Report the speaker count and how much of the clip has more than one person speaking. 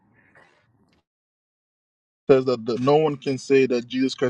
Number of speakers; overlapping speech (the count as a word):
one, no overlap